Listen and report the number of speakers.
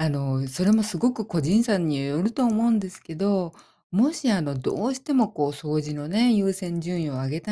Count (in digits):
1